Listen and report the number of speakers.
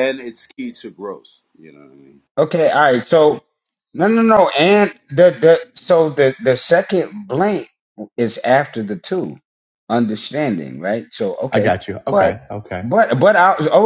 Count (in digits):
3